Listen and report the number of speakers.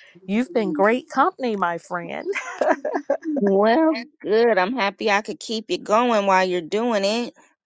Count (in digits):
2